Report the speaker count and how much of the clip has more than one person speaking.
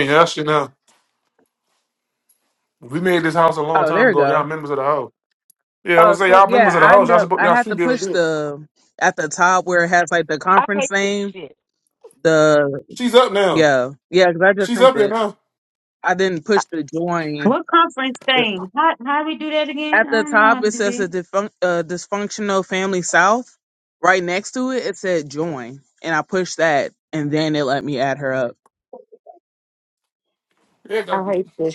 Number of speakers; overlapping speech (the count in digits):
4, about 18%